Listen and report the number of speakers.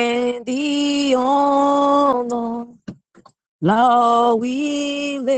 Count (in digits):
1